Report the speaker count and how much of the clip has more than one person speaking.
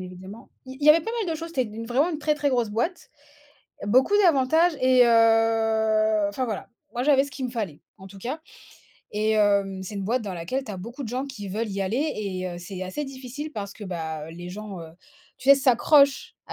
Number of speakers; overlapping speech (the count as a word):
one, no overlap